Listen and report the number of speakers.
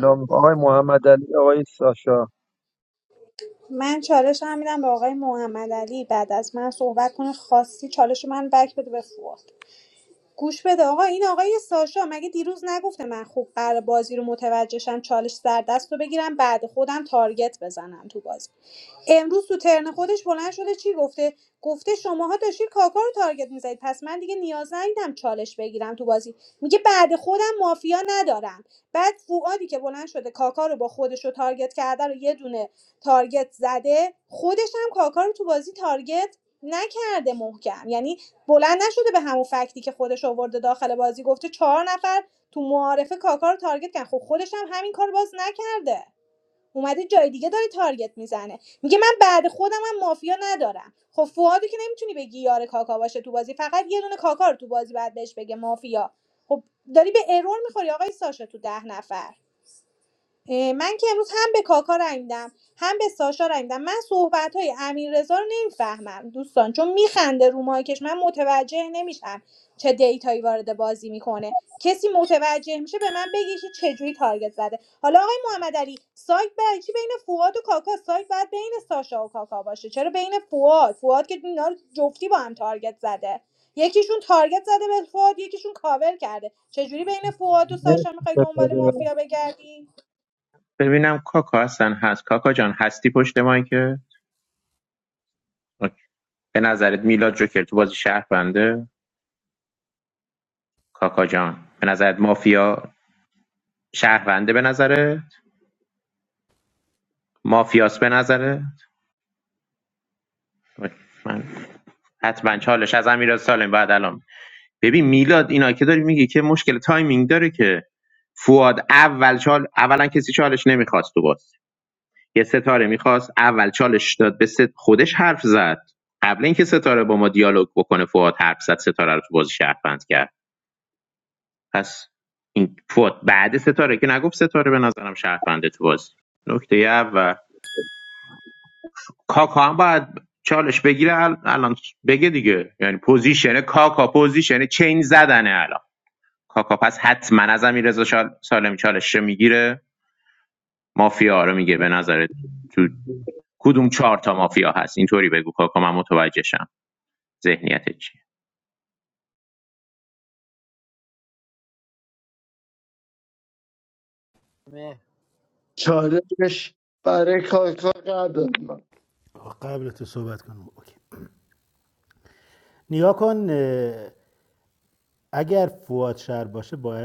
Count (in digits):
5